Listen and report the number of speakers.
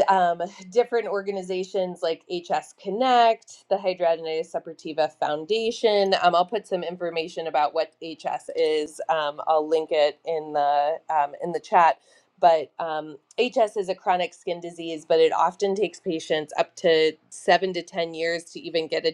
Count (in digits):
1